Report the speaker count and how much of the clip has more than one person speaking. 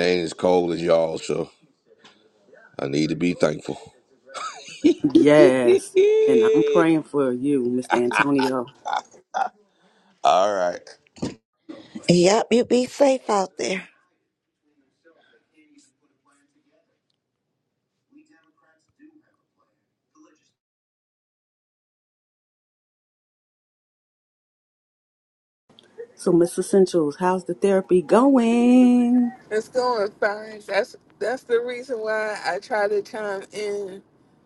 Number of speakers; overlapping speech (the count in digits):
4, no overlap